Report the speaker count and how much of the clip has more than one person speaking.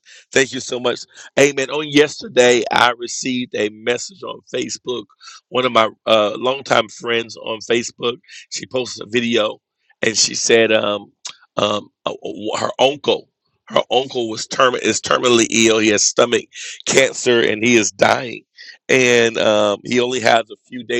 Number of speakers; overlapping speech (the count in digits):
1, no overlap